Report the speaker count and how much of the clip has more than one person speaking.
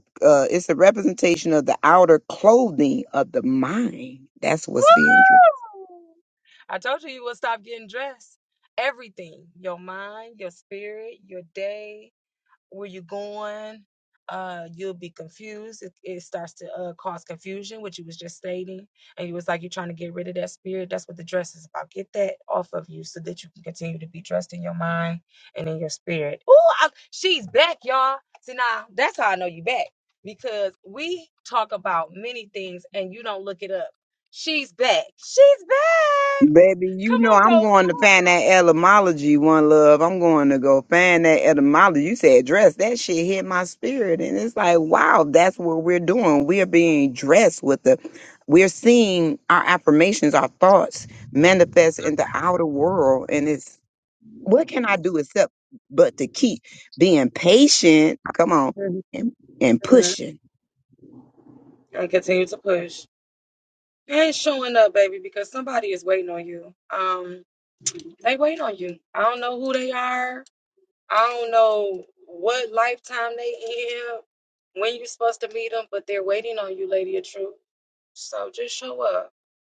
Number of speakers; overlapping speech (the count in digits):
2, about 1%